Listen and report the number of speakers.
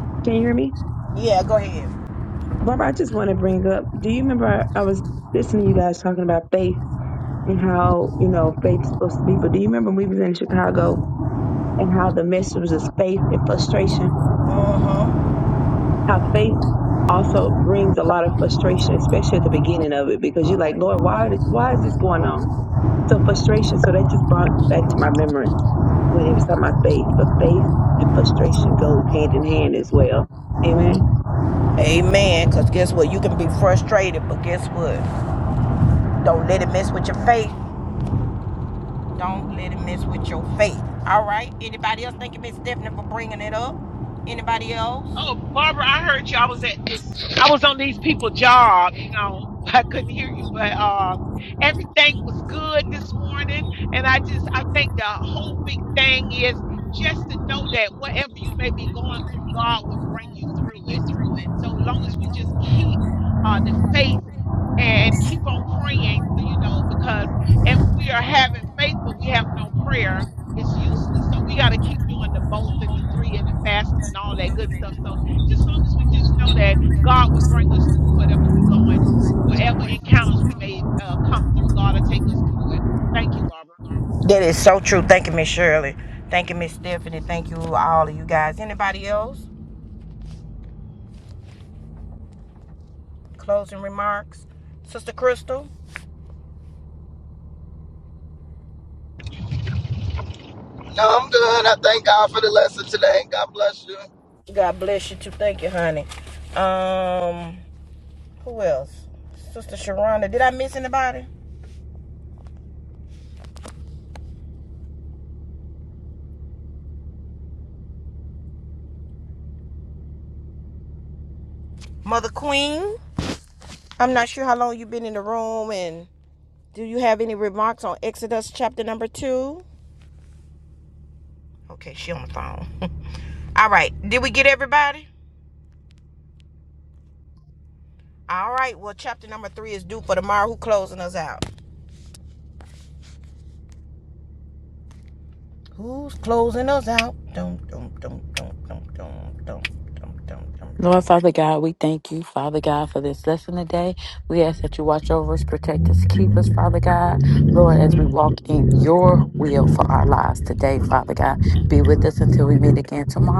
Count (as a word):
five